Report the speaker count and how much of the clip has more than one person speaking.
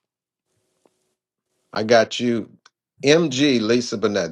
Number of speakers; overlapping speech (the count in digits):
1, no overlap